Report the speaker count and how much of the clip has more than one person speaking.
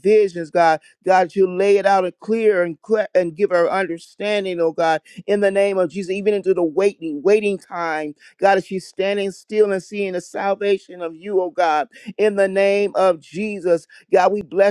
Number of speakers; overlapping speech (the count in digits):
1, no overlap